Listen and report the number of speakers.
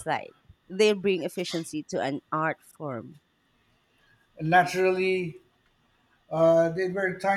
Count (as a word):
two